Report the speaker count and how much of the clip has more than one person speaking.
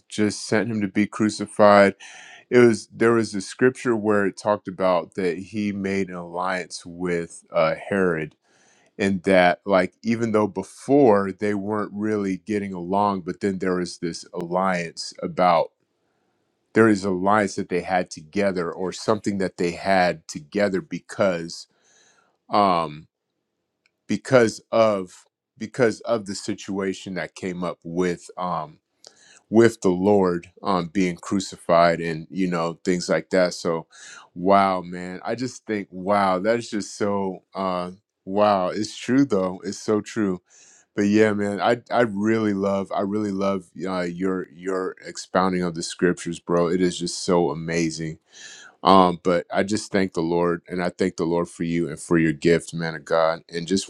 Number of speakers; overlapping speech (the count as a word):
one, no overlap